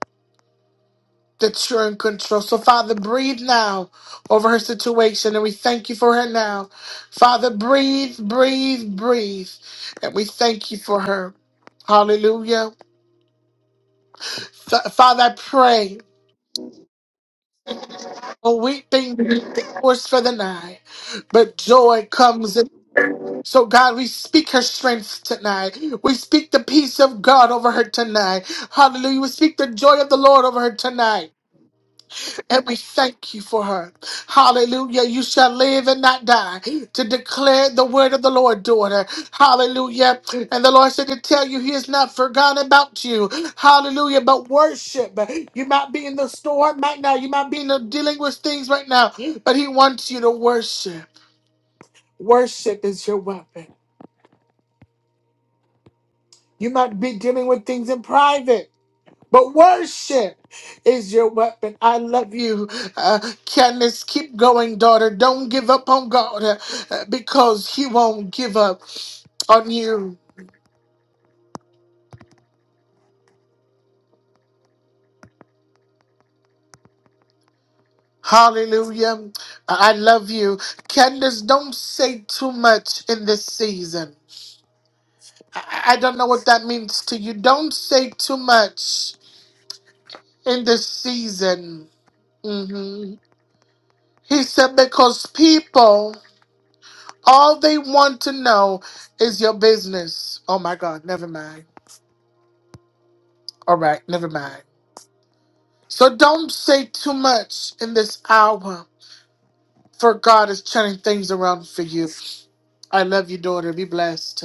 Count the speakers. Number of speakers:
one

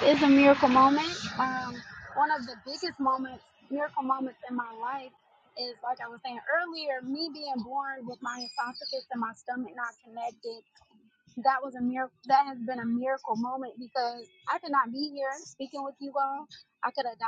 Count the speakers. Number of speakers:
one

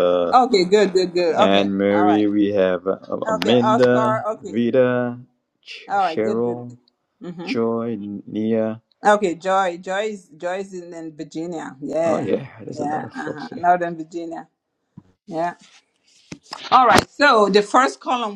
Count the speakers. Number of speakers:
two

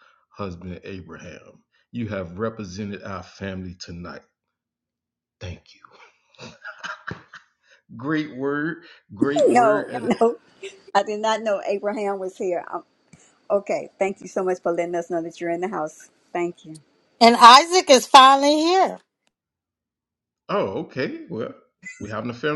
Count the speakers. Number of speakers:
three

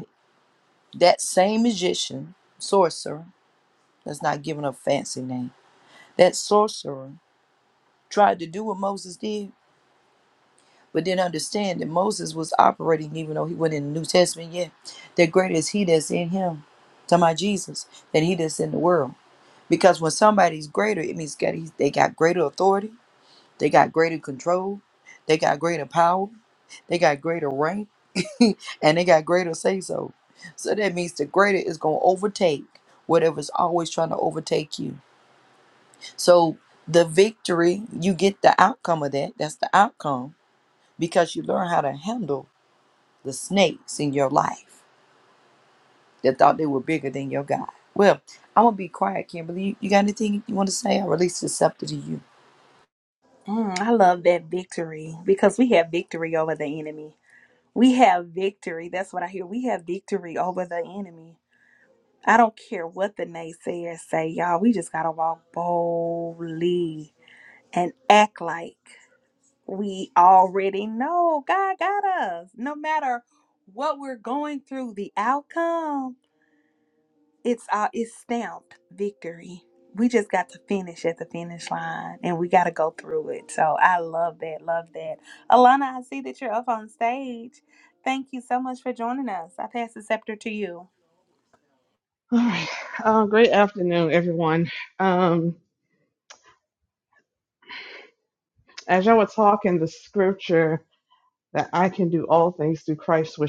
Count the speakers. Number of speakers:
three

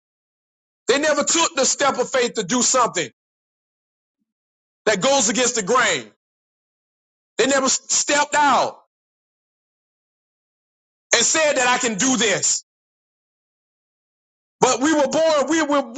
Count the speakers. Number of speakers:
one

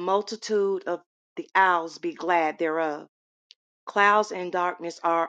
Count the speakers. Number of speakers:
one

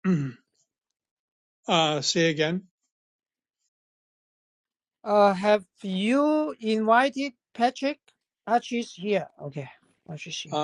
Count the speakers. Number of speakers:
two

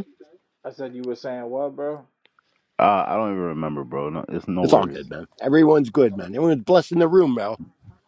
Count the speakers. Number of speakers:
three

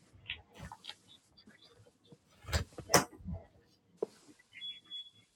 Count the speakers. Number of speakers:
zero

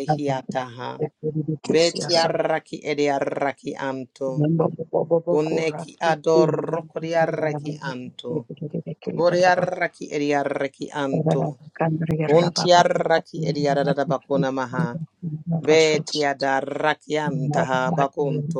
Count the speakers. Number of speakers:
two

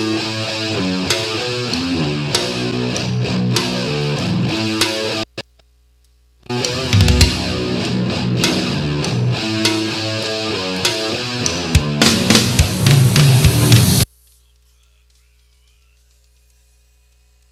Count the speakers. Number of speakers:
zero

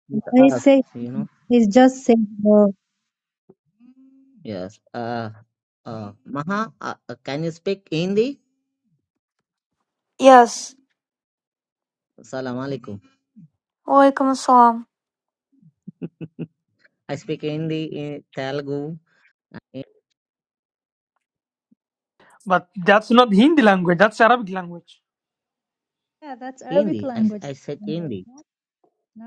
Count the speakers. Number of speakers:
four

